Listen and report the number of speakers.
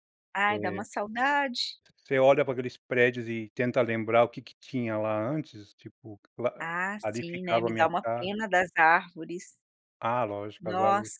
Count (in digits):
2